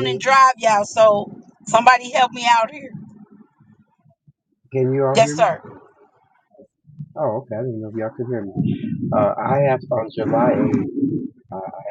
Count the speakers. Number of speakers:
2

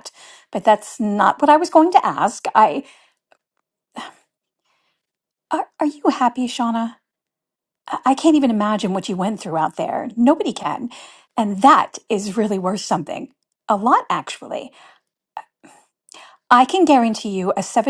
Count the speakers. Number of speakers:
1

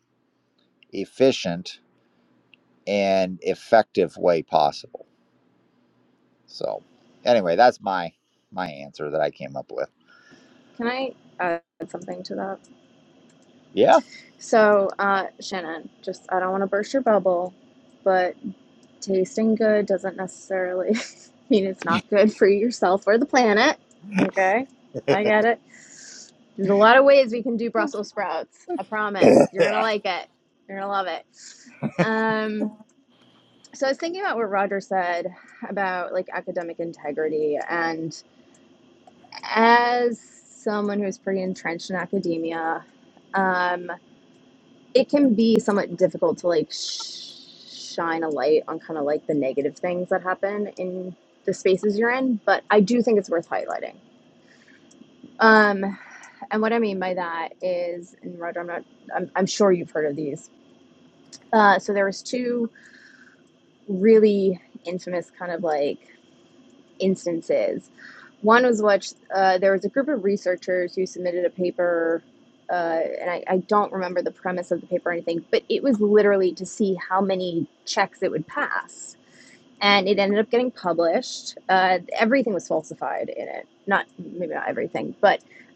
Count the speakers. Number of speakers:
2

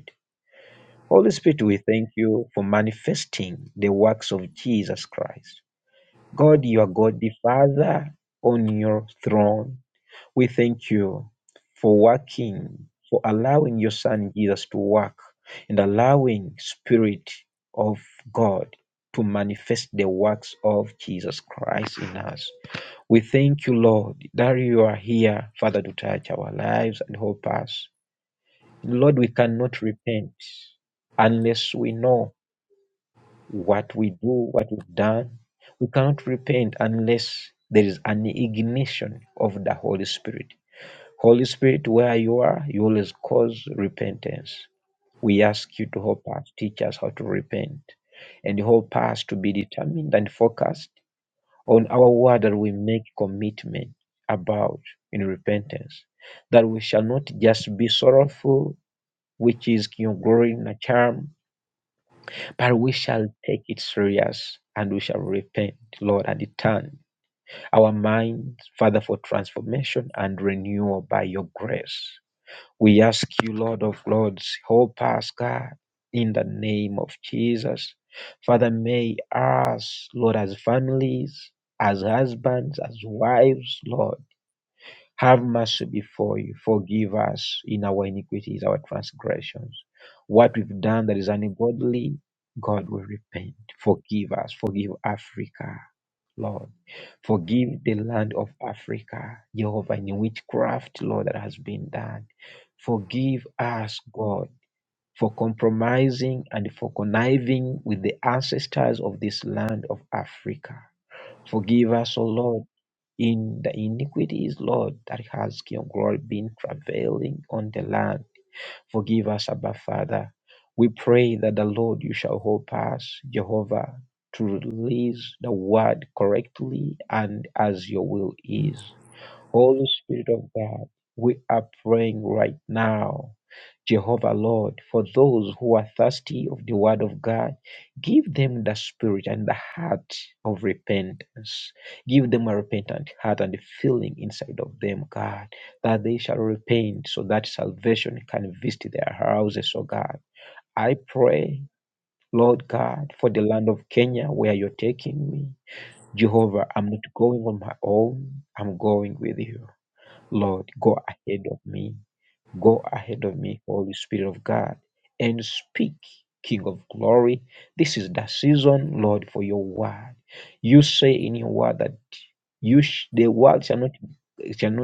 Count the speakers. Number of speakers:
1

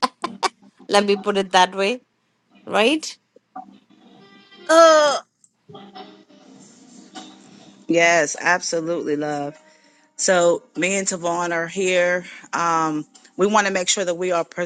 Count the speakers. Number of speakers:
2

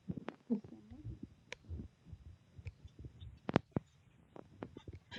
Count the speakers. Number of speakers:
0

